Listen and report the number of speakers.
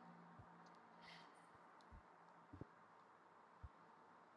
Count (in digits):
0